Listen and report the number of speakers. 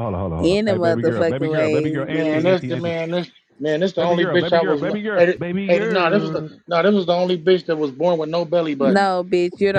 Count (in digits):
3